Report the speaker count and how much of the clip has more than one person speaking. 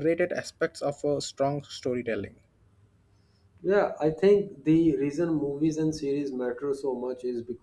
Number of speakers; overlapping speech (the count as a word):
two, no overlap